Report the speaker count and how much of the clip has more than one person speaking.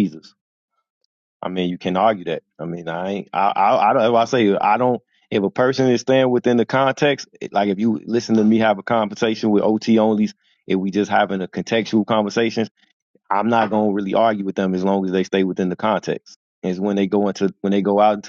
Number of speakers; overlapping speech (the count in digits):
1, no overlap